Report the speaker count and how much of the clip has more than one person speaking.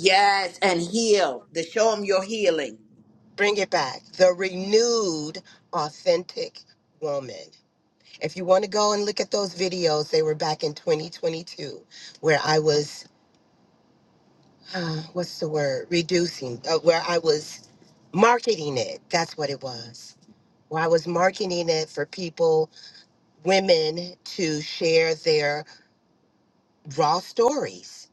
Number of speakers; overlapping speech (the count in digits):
2, no overlap